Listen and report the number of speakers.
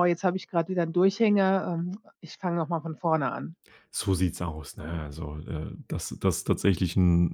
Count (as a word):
two